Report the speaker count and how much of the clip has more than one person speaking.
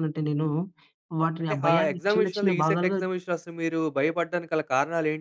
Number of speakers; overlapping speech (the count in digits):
2, about 31%